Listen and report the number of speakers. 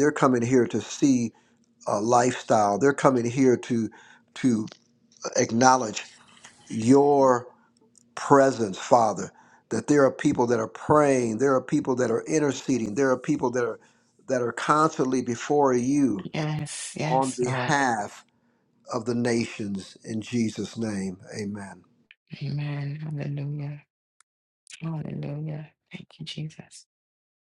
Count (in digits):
2